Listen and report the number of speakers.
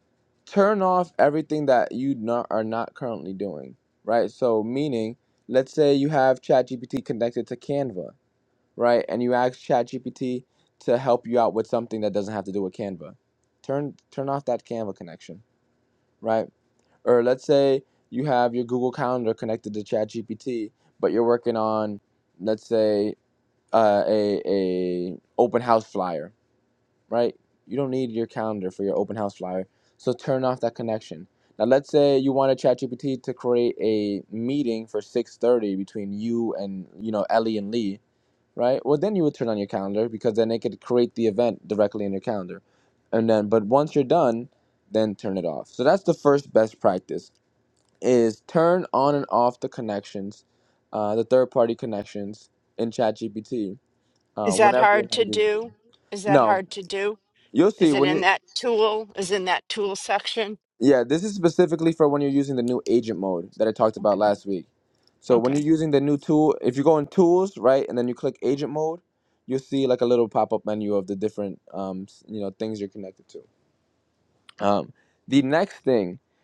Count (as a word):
two